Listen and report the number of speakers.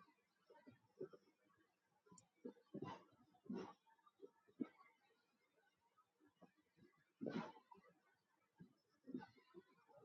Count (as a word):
zero